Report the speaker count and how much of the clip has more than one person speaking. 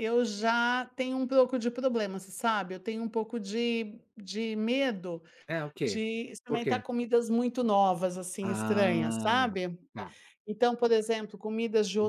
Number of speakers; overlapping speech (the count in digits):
2, about 13%